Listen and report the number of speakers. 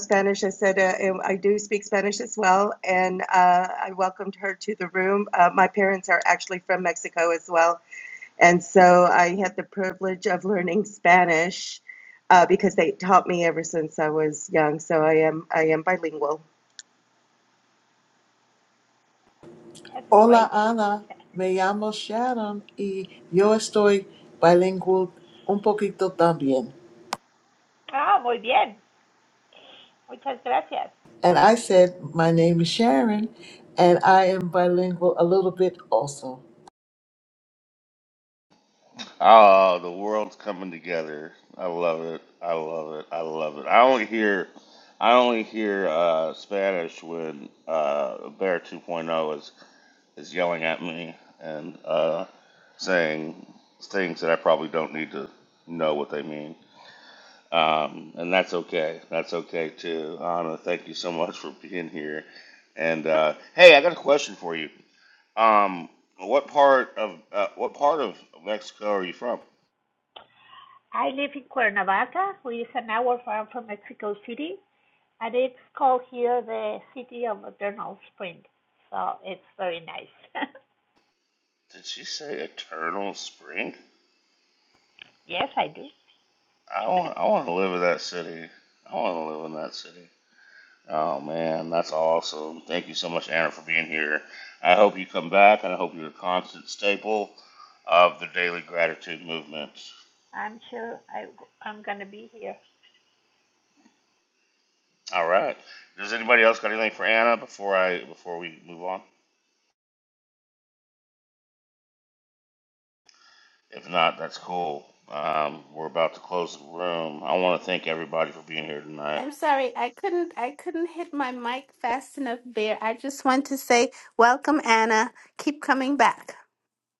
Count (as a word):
five